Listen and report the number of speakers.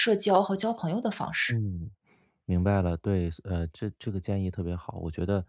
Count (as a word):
two